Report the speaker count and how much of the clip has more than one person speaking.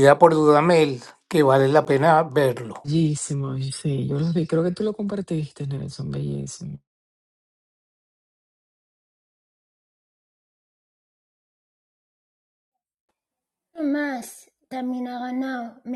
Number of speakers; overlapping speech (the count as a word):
three, no overlap